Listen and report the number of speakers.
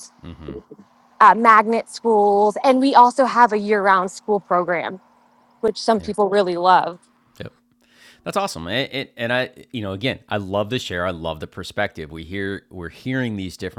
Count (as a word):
two